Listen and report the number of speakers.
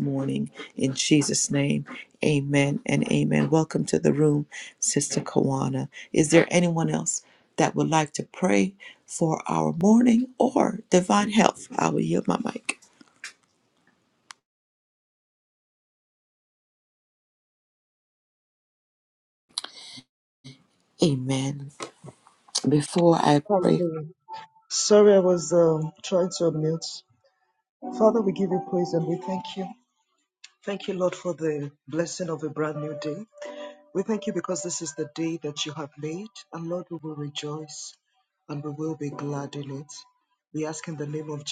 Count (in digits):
2